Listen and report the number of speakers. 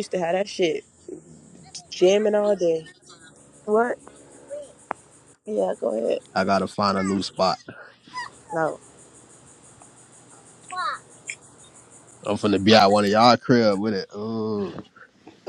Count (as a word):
three